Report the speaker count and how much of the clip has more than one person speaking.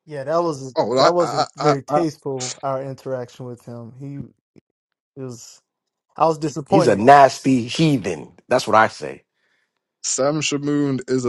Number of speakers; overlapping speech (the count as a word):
three, about 14%